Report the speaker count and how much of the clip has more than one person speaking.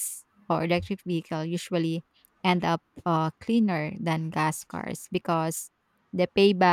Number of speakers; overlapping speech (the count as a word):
one, no overlap